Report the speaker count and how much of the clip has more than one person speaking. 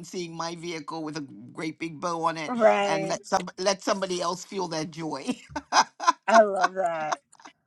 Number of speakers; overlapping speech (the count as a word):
two, about 5%